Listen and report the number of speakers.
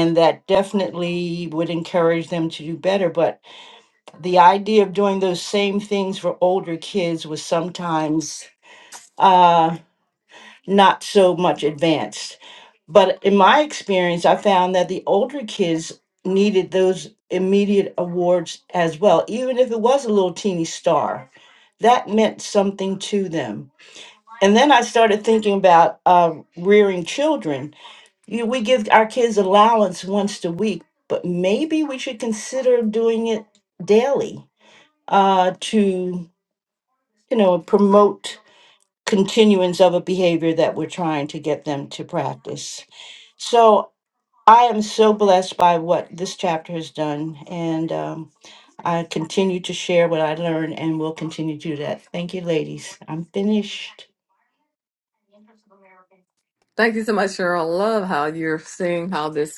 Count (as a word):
two